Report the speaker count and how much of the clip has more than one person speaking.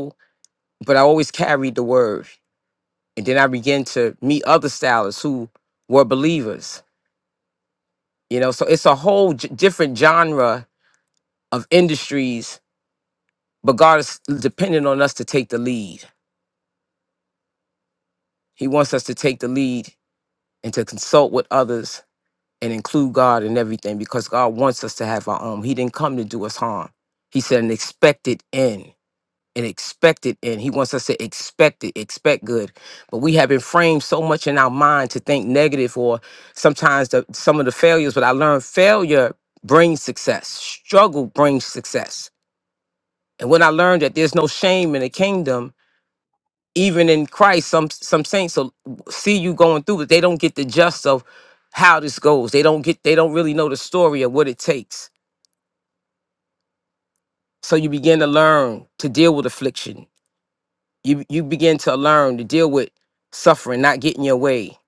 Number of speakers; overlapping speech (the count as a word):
one, no overlap